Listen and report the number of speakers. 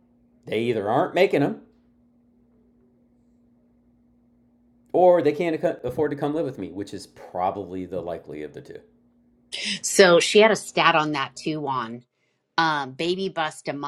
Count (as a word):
two